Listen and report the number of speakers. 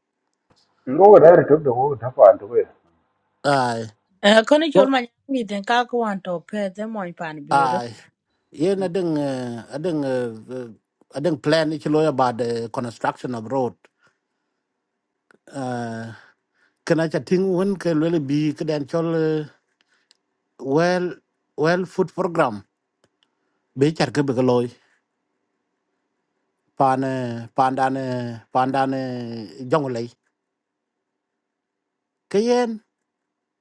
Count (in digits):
3